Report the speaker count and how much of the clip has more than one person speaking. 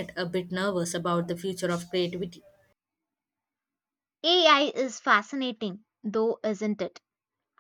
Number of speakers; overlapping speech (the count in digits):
2, no overlap